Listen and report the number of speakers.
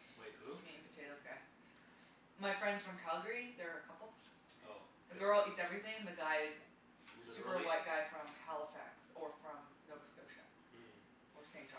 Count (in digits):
2